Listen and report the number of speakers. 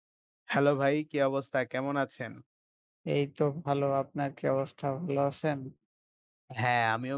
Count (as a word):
two